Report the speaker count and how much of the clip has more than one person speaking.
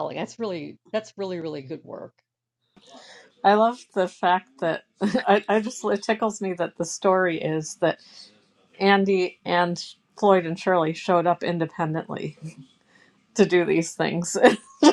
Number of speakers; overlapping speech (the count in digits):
2, no overlap